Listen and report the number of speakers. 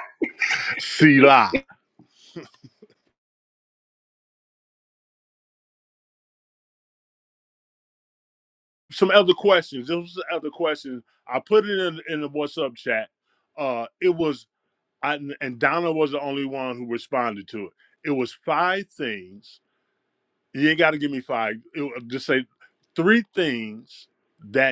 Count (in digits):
1